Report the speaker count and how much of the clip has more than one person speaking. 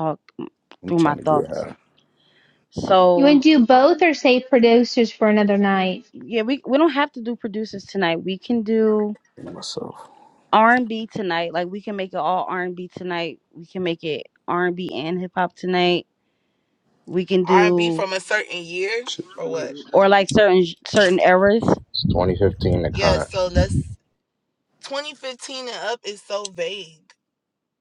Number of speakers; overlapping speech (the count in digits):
5, about 6%